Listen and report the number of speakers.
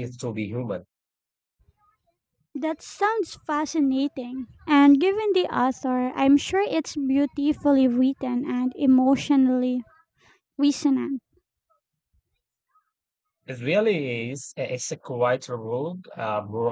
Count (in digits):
2